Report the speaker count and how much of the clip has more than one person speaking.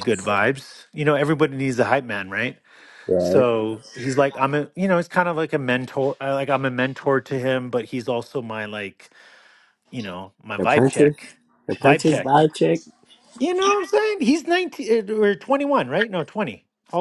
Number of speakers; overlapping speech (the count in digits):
2, about 7%